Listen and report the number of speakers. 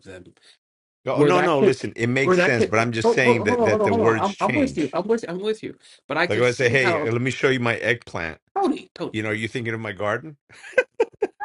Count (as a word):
two